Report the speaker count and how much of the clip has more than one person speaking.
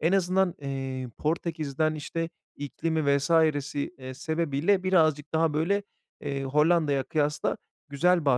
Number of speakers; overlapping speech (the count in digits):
1, no overlap